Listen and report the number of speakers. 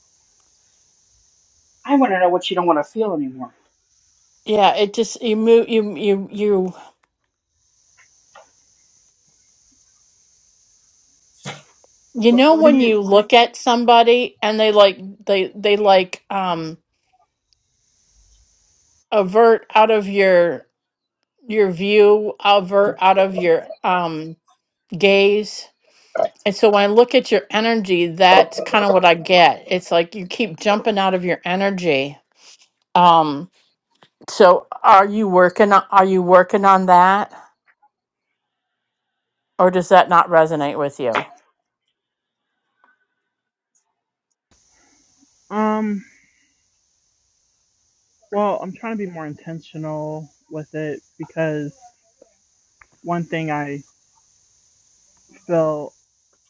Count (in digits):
3